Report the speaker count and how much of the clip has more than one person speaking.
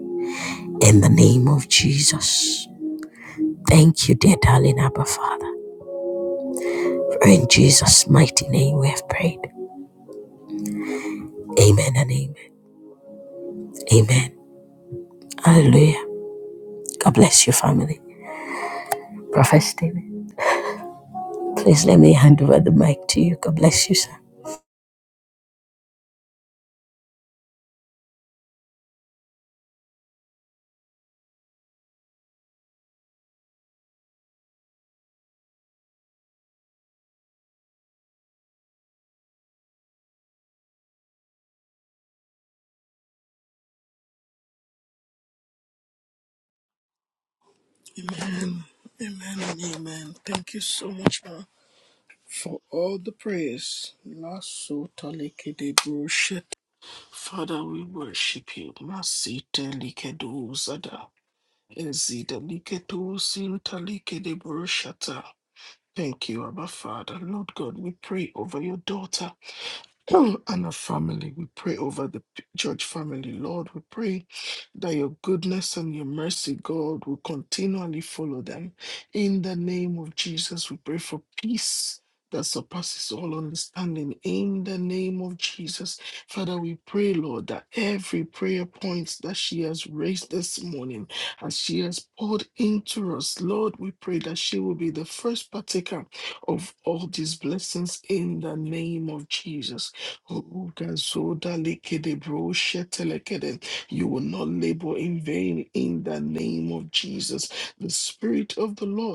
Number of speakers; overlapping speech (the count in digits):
2, no overlap